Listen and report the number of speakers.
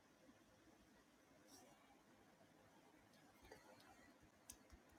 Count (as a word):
zero